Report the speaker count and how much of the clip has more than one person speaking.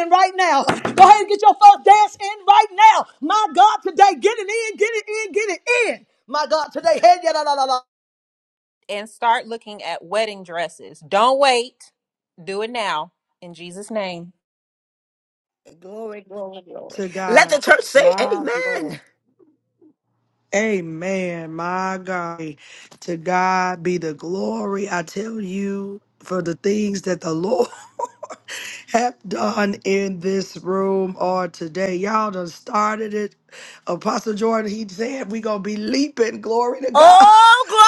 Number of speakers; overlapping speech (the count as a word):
four, about 4%